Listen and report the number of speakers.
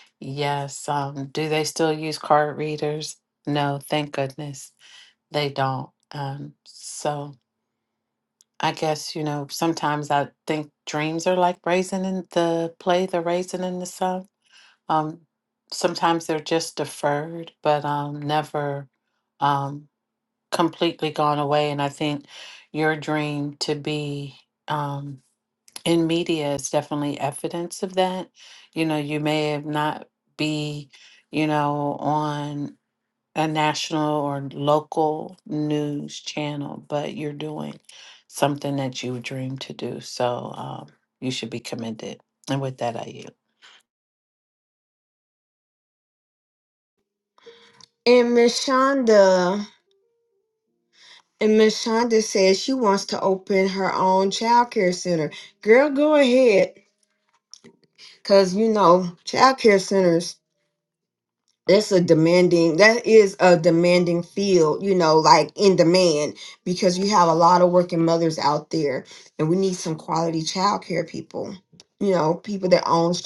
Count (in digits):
2